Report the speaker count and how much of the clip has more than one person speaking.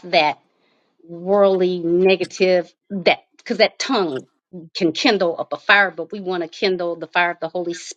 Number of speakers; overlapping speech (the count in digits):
1, no overlap